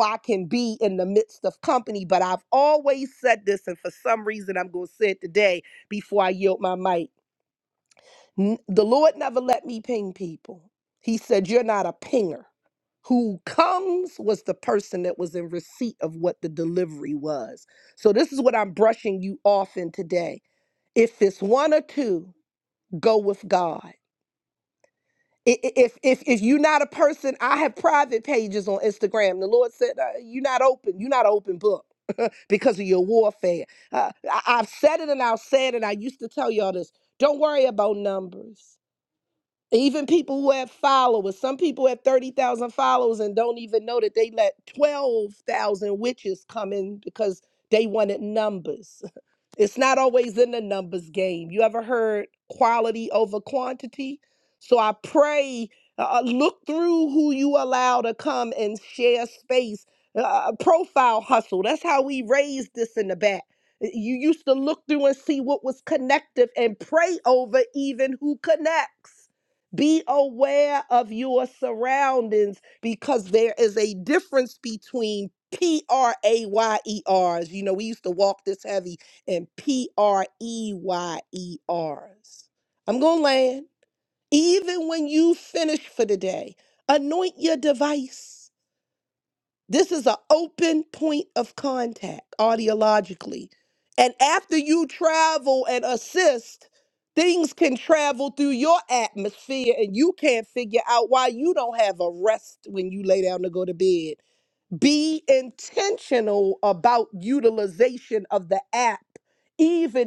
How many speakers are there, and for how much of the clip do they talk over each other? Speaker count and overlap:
1, no overlap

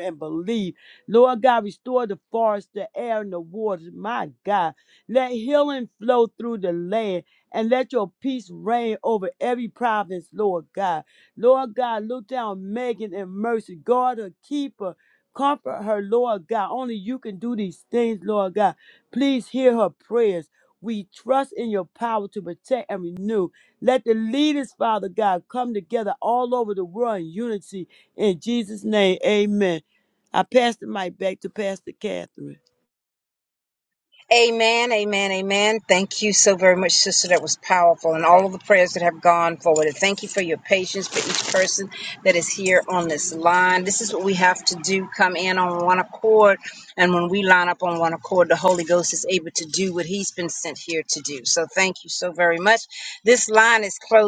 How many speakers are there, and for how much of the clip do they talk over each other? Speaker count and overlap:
2, no overlap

